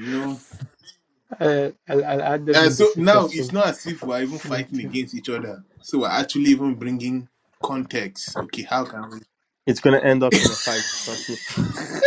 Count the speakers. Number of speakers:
3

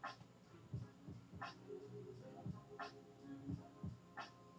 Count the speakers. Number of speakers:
0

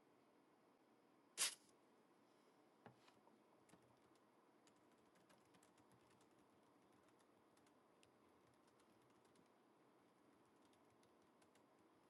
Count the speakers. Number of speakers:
0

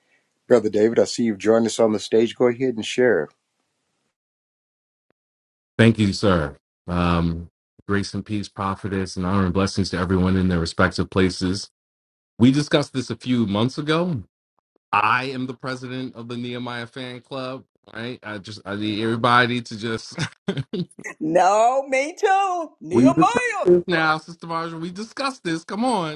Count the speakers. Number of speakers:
3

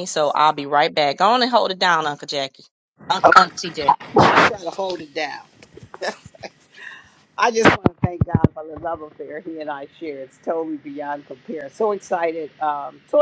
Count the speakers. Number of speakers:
2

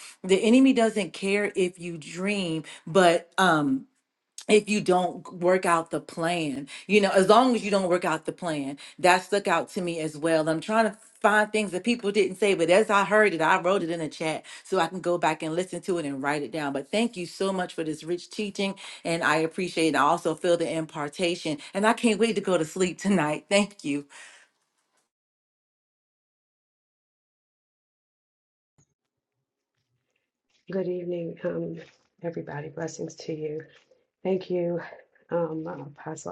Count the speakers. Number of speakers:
2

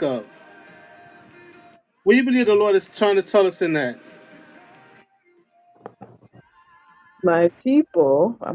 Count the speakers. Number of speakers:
2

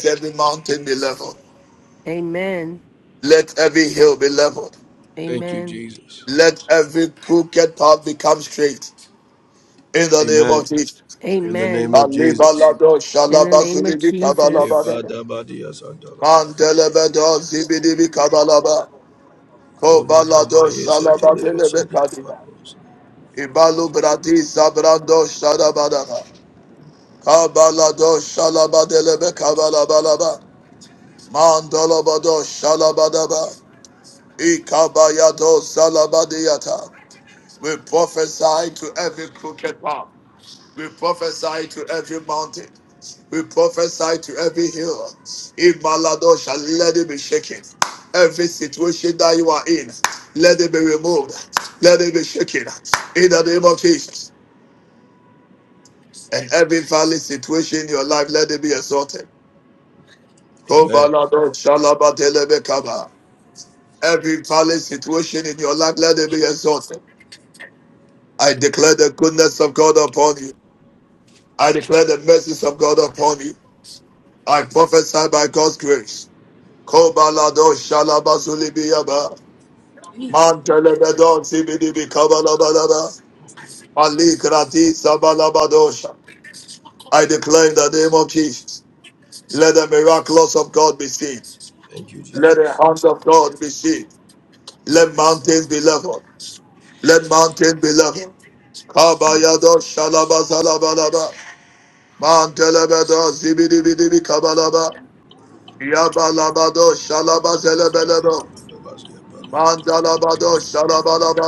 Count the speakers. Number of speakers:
3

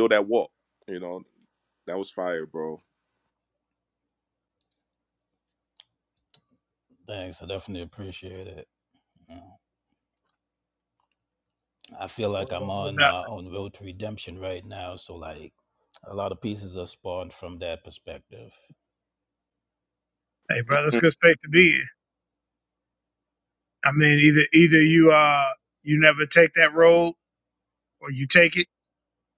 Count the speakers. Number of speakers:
3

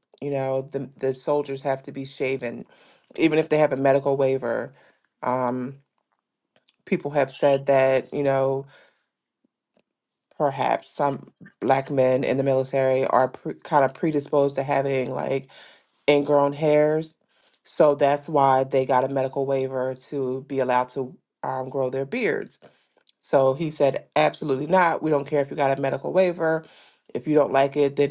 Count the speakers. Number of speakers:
1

